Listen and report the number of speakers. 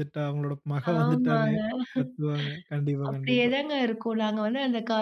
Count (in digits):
2